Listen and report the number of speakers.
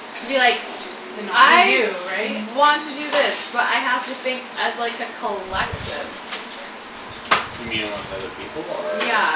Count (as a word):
three